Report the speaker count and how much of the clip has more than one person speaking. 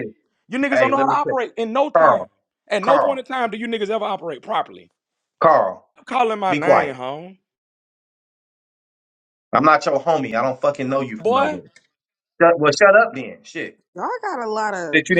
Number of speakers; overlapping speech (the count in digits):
3, about 16%